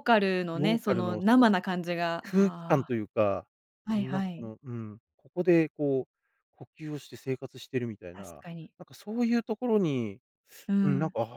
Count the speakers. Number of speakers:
two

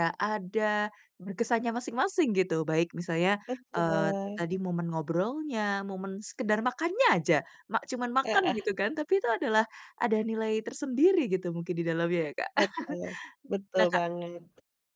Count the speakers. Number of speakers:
two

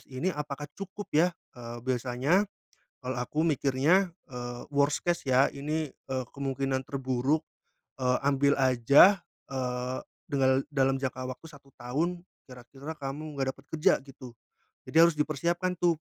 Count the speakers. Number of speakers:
one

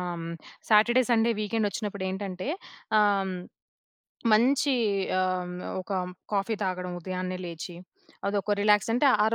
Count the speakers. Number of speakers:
one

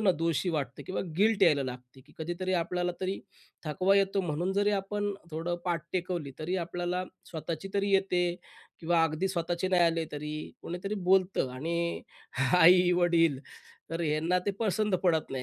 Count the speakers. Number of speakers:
one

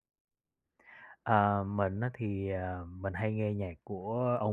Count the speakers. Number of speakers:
one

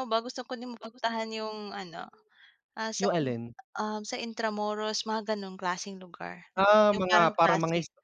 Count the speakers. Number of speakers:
two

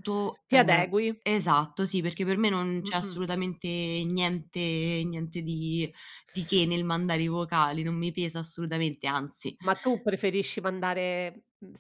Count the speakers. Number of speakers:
two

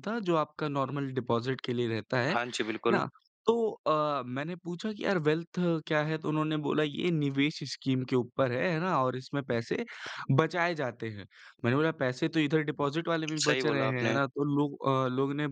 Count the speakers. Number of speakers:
two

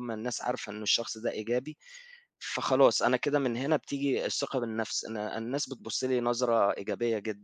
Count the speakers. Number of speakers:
one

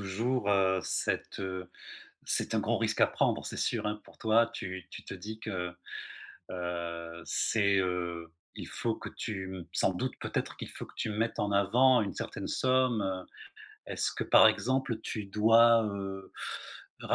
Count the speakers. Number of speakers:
one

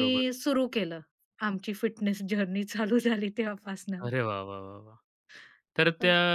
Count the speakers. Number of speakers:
two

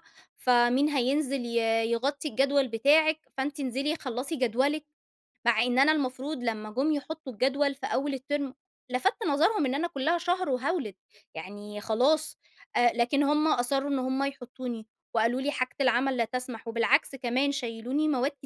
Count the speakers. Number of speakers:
one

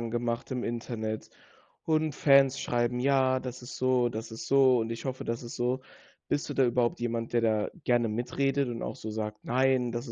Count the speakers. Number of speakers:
one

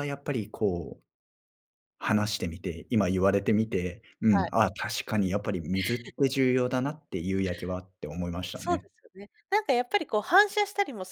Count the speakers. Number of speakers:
two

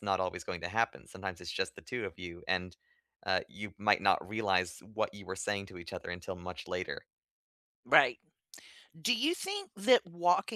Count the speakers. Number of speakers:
two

